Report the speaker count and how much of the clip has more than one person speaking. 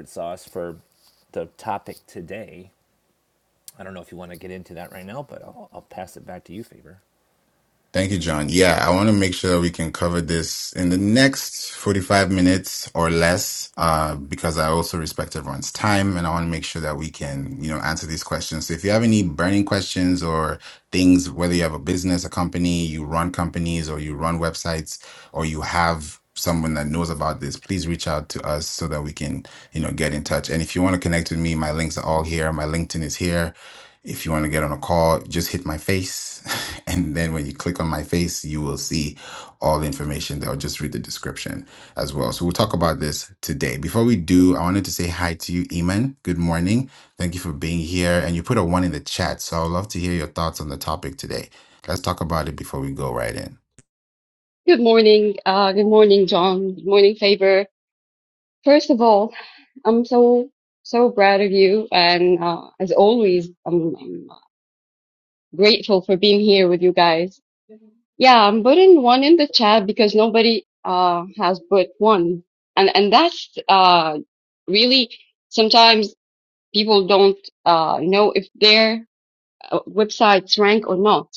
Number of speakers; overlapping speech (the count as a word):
three, no overlap